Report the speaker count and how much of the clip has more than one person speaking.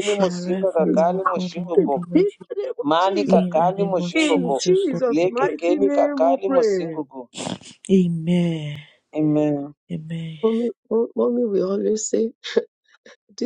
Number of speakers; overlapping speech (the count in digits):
3, about 49%